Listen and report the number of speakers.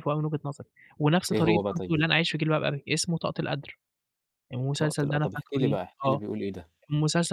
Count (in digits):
2